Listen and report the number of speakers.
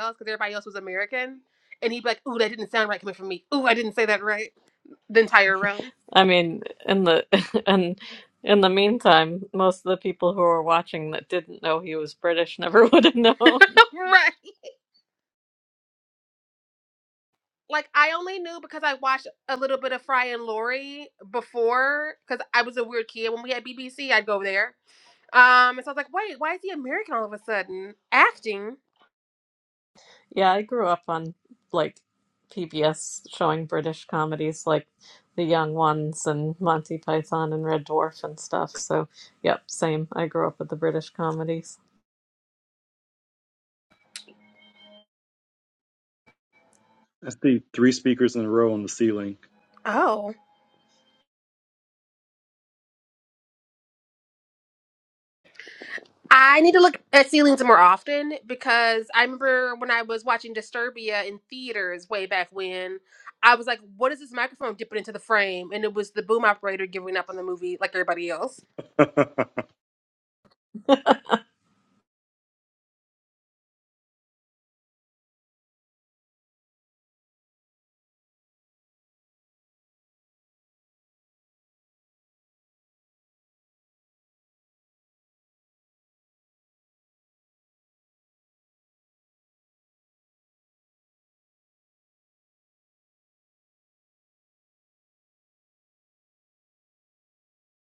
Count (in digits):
3